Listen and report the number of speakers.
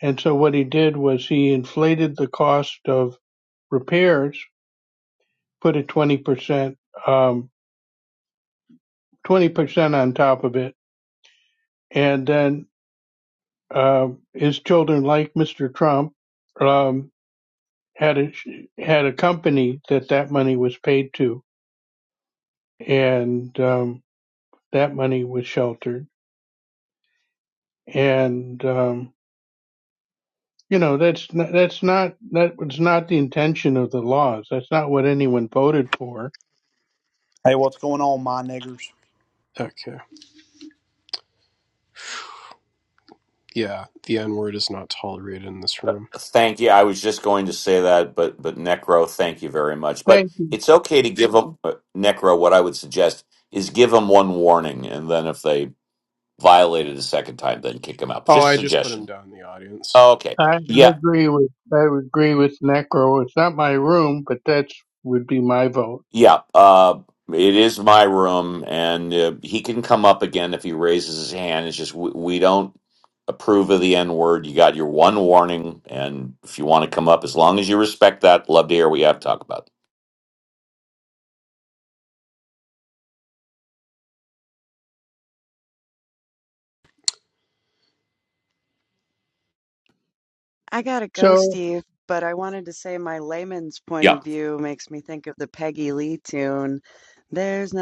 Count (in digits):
5